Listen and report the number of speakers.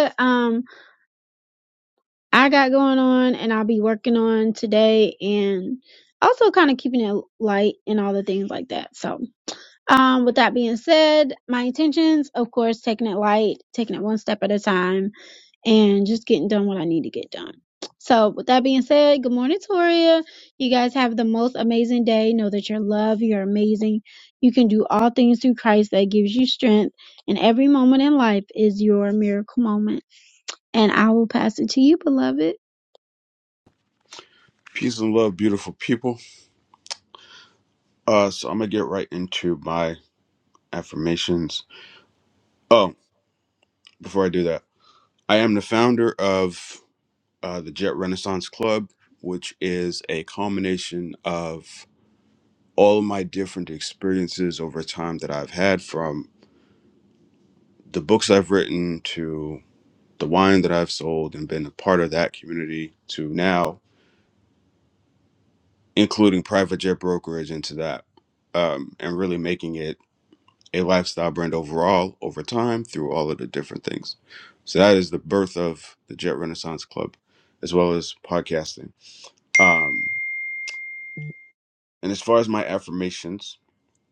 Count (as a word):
two